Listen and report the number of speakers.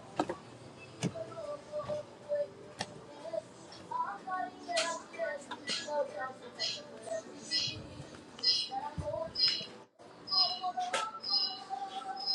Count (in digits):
0